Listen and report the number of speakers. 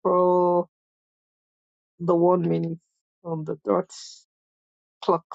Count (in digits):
1